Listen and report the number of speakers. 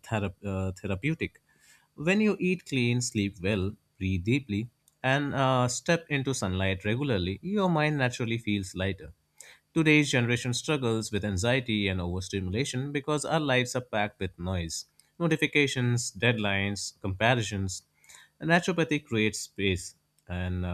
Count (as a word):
one